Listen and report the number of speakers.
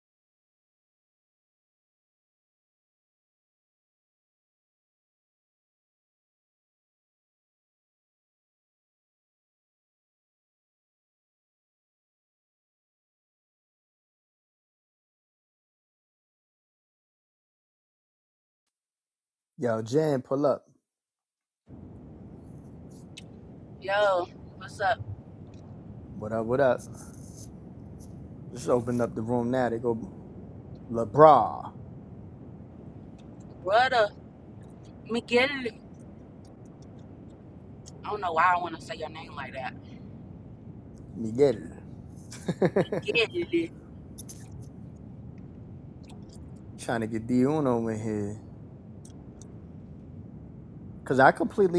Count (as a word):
two